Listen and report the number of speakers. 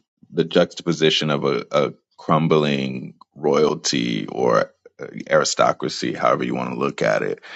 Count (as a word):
one